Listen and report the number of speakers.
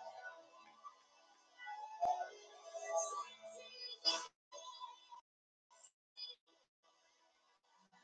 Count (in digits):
0